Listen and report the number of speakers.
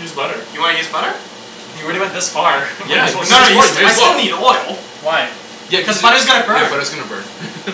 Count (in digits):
3